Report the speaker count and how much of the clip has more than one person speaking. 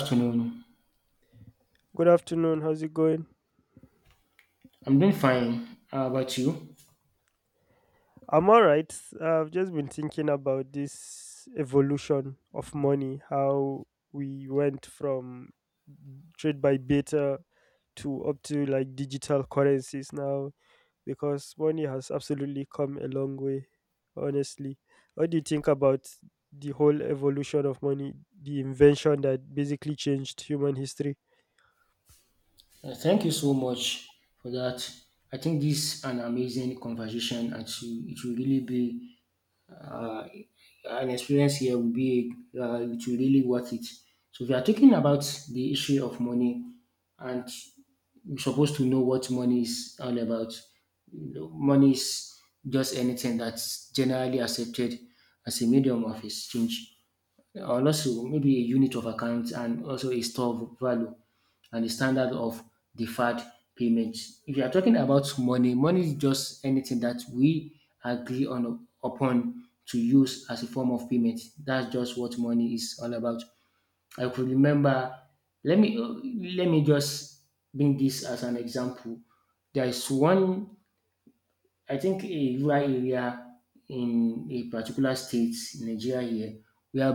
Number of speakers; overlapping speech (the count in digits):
2, no overlap